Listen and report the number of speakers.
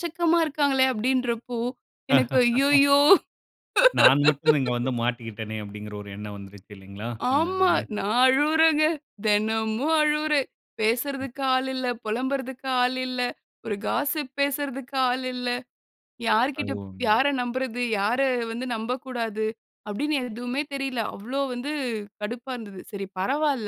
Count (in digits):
2